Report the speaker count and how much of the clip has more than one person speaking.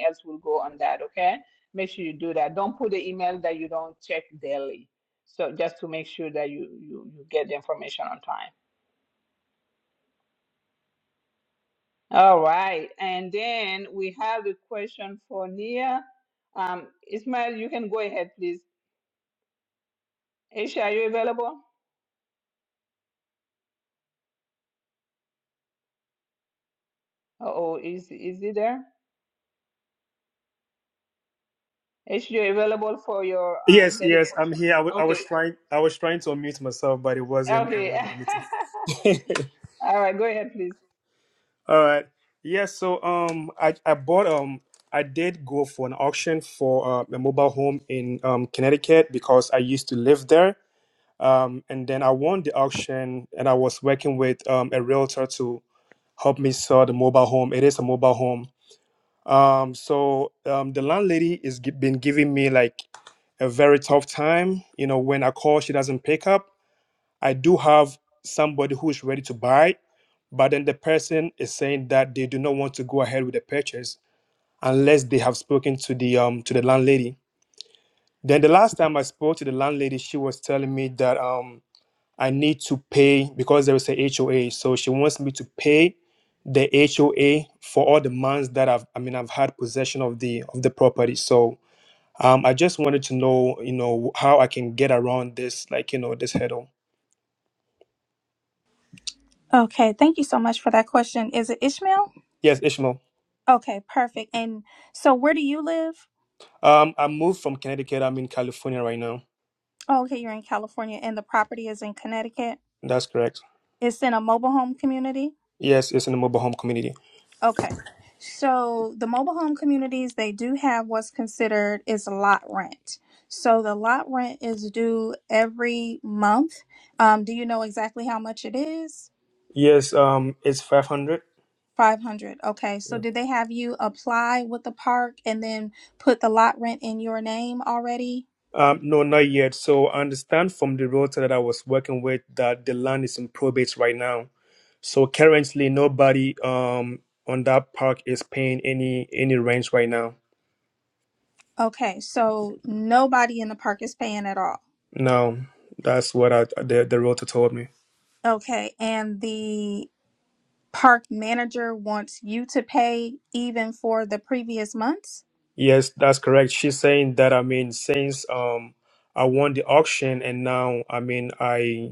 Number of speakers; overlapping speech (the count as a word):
three, about 1%